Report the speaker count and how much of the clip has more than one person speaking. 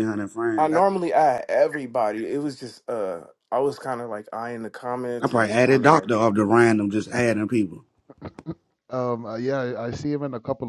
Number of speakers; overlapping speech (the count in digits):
3, about 10%